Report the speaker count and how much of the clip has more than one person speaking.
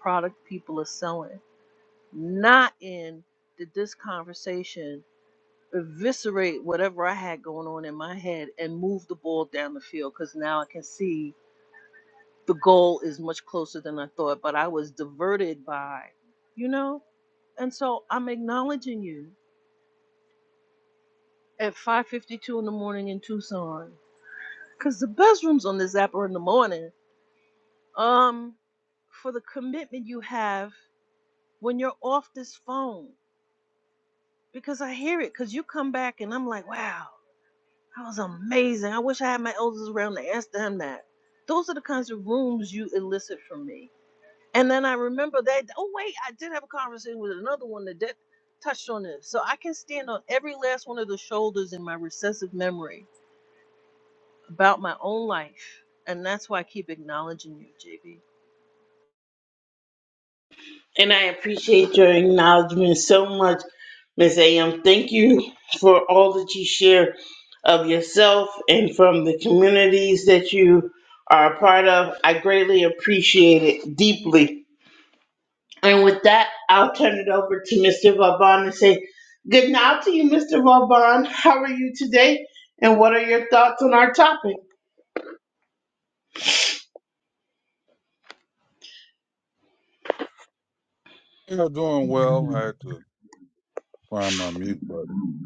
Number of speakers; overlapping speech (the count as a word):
three, no overlap